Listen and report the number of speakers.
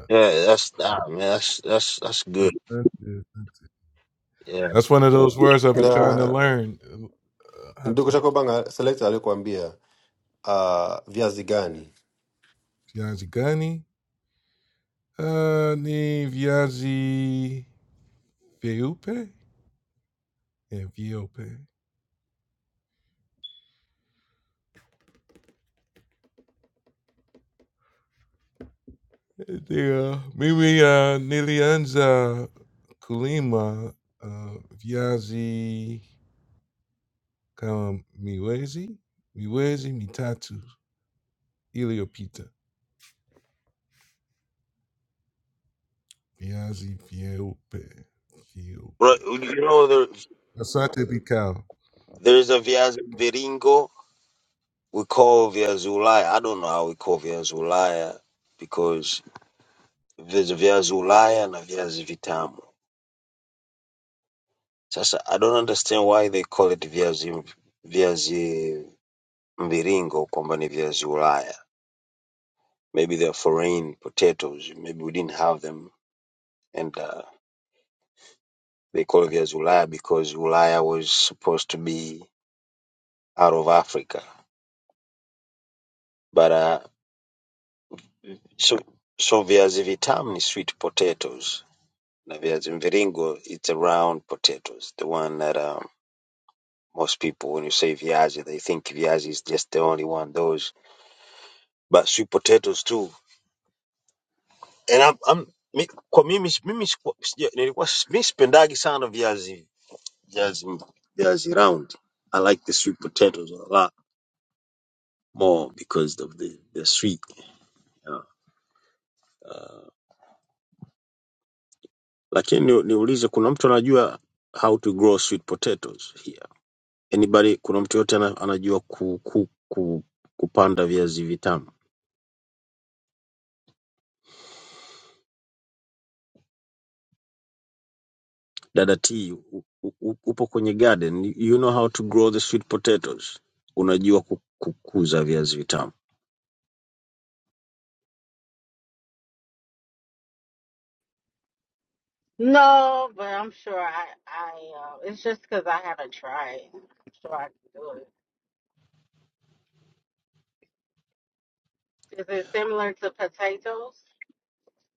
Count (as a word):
four